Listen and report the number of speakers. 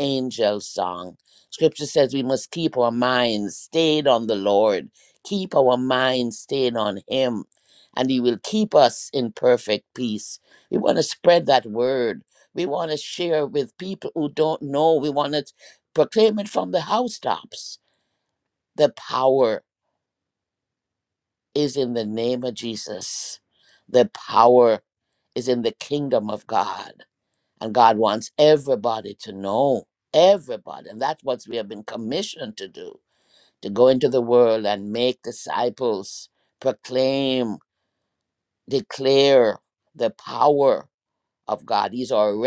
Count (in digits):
1